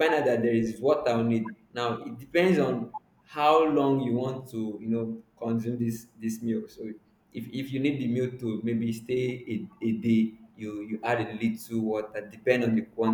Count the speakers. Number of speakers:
one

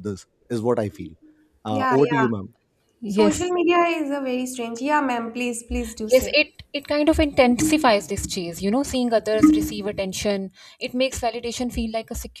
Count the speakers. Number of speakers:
three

